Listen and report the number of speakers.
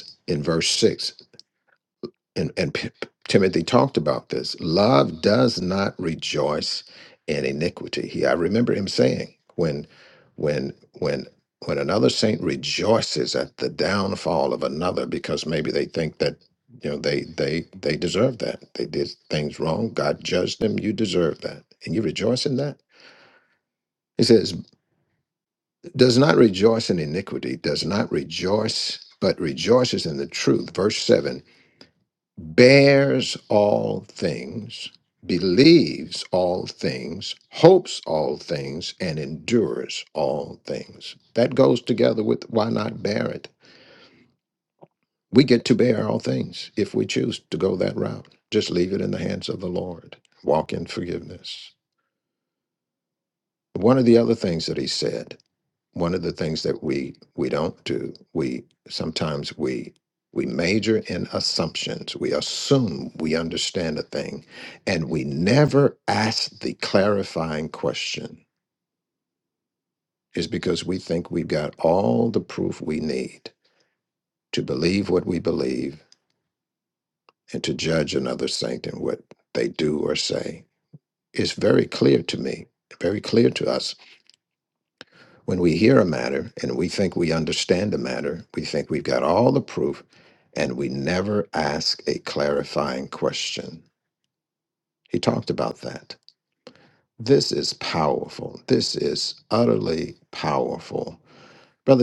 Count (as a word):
one